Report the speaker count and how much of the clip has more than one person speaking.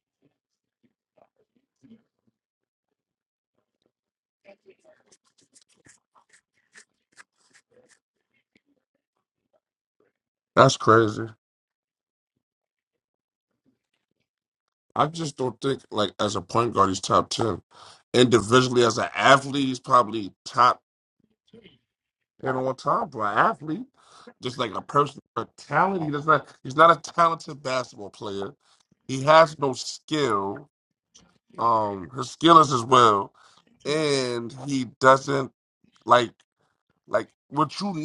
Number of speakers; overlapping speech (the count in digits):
1, no overlap